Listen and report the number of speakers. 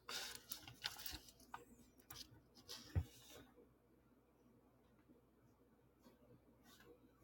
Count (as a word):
zero